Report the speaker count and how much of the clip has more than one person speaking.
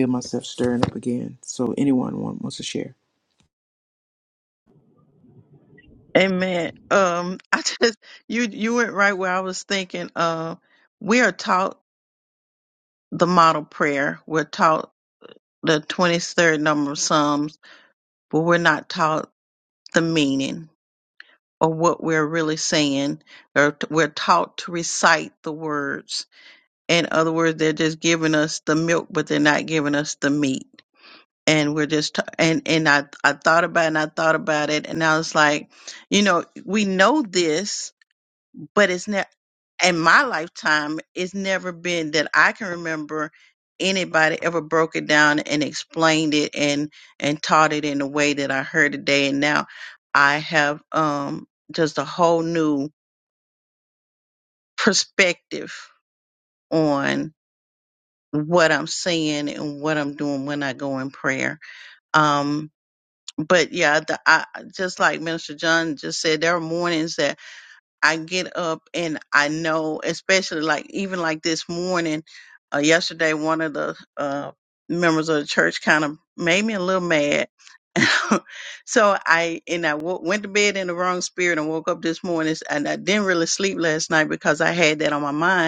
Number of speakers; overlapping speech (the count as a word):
two, no overlap